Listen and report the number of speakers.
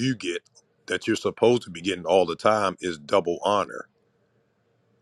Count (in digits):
1